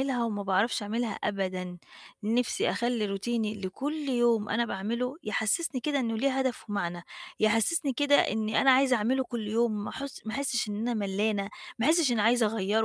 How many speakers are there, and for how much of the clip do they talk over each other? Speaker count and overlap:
one, no overlap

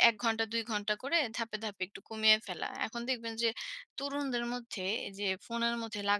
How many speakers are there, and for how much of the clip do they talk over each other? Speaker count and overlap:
one, no overlap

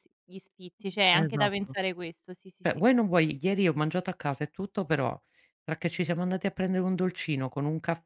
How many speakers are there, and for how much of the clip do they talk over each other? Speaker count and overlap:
two, about 9%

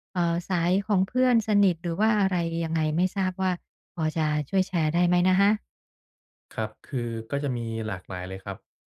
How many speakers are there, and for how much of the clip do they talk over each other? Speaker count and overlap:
two, no overlap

